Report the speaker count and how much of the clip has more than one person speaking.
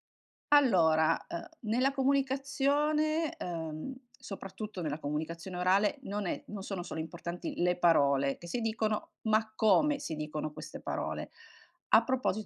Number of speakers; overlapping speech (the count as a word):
one, no overlap